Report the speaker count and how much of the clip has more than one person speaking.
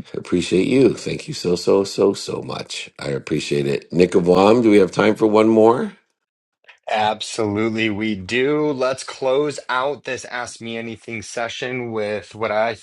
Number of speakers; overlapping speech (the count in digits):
2, no overlap